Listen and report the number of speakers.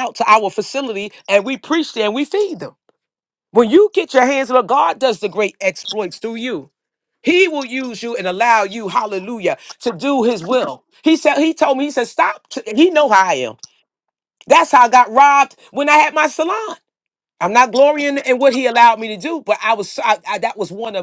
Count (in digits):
1